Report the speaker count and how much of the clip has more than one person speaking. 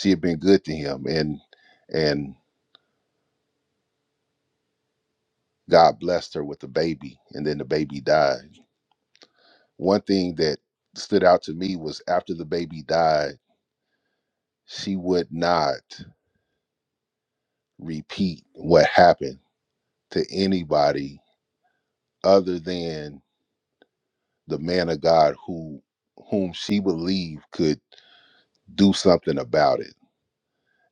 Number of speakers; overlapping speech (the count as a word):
one, no overlap